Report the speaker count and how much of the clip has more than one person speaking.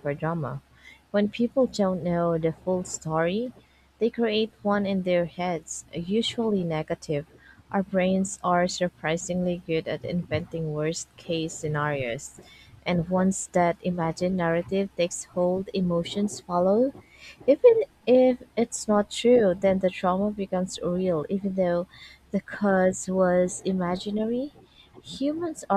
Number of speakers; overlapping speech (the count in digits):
1, no overlap